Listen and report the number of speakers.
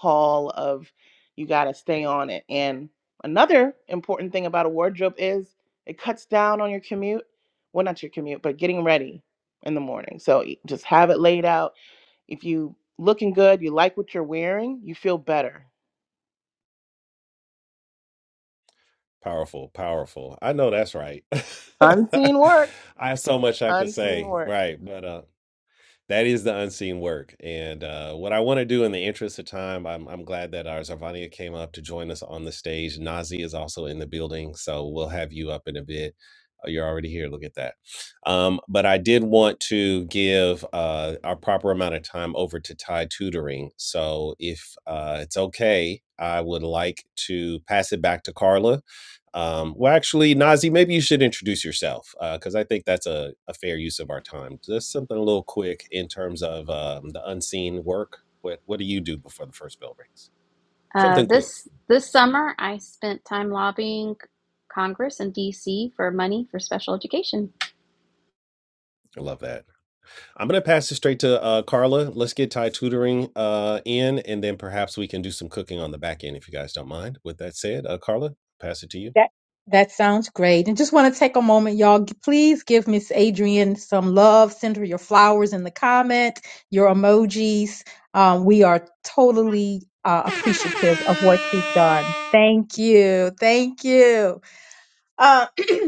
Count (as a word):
four